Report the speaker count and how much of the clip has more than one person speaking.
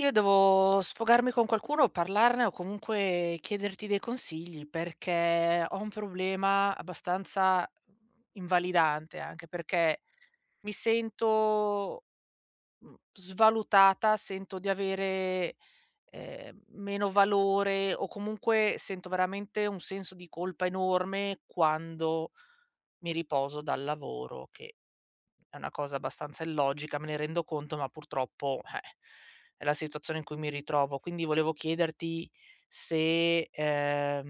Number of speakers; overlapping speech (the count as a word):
one, no overlap